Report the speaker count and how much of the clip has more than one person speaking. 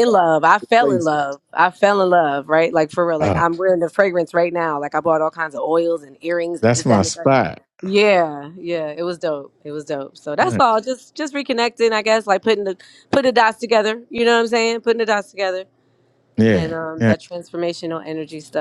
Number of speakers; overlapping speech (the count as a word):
two, about 10%